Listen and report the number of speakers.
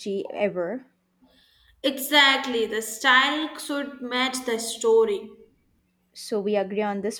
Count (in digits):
2